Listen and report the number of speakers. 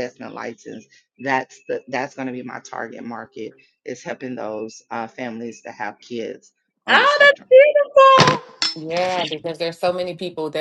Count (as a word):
three